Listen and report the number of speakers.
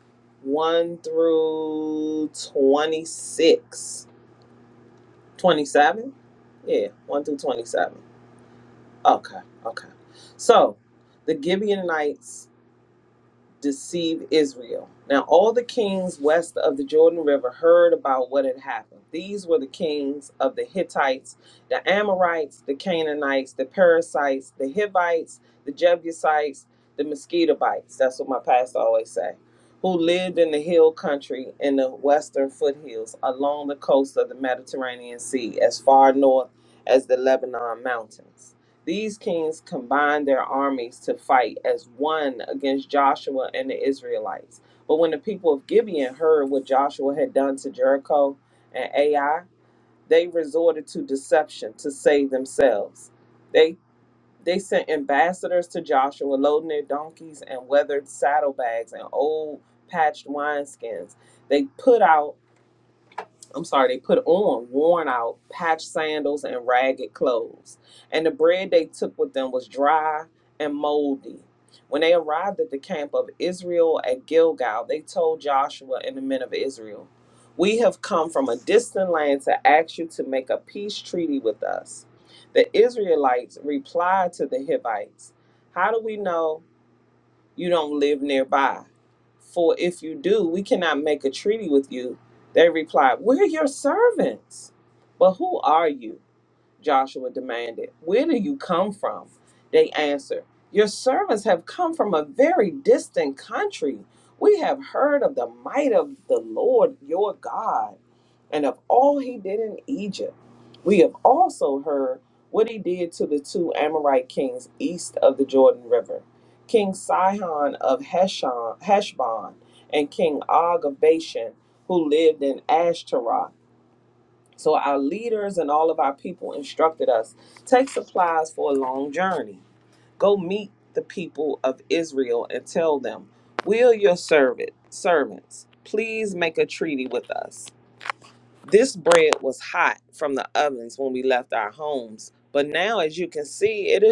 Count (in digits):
1